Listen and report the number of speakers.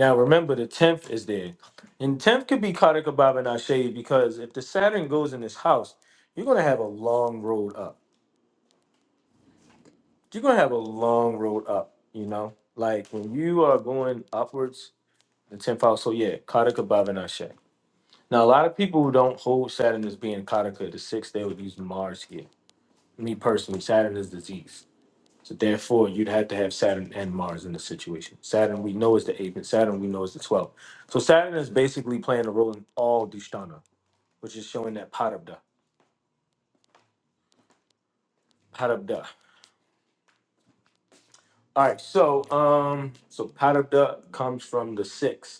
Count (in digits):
1